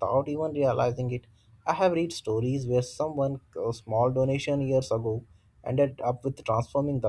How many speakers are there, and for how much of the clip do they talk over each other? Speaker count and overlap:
1, no overlap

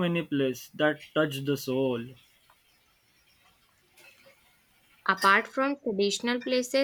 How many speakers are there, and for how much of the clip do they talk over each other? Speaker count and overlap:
2, no overlap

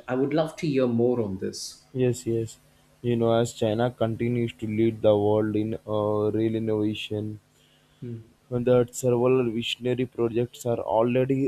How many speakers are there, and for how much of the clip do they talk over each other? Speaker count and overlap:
2, no overlap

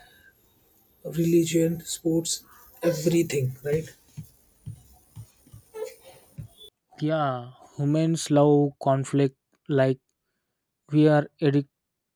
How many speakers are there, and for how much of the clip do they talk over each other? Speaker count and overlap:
2, no overlap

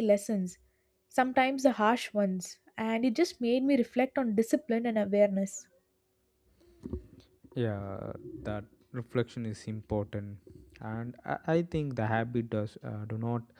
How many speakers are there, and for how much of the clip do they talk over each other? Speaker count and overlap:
2, no overlap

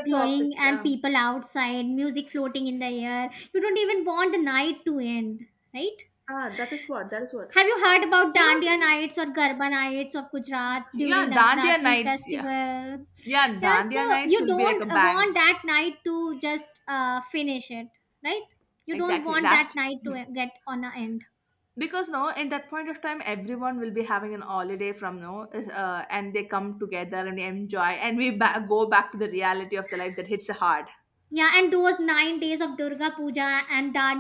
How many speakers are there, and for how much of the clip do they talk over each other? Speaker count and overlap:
2, about 17%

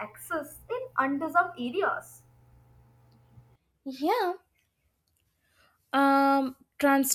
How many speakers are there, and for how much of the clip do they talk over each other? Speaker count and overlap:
2, no overlap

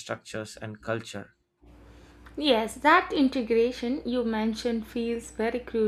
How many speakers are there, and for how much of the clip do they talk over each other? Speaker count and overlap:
2, no overlap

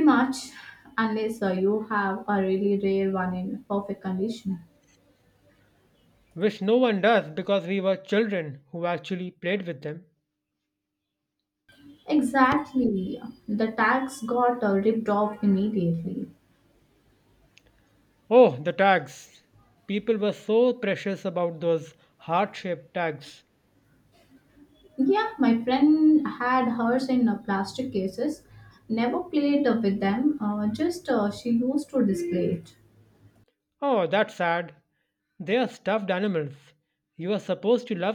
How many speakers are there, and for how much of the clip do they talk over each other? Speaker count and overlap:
2, no overlap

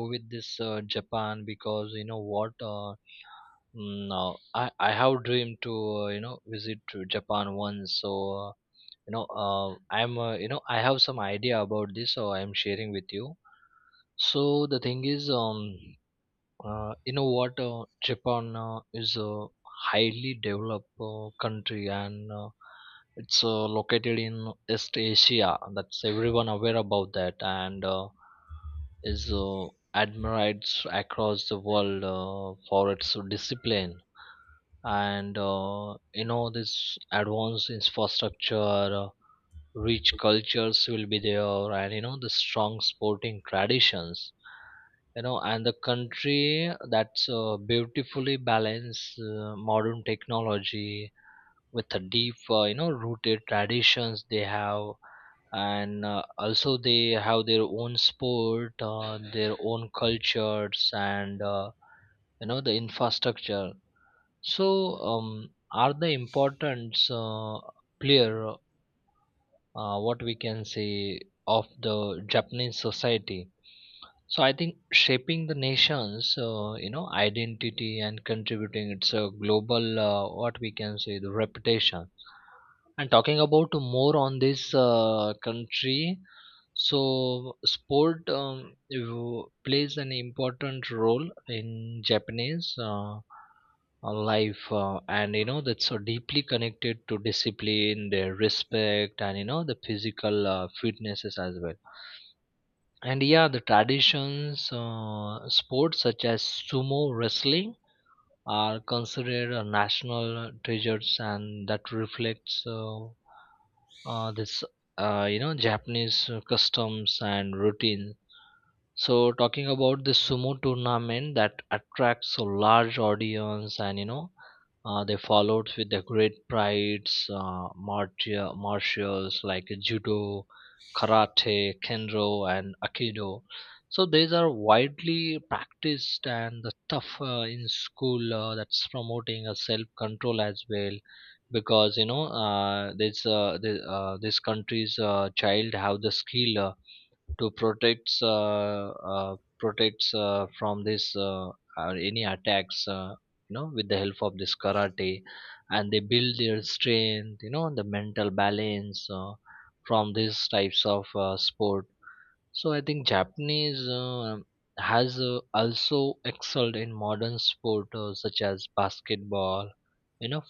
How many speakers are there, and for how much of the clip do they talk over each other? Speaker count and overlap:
1, no overlap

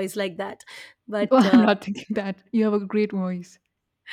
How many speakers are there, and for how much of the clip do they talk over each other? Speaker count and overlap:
2, about 12%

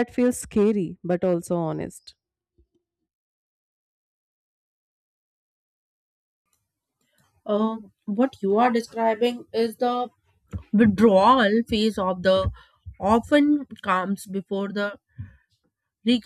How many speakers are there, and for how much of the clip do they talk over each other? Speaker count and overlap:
2, no overlap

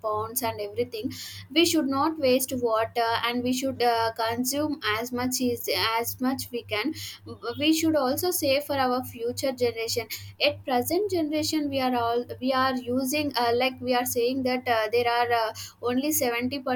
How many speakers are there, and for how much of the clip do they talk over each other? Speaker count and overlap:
1, no overlap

